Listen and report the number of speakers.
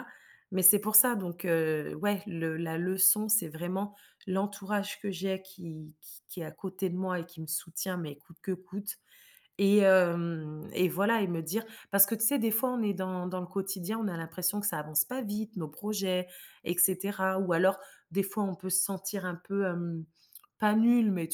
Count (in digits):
1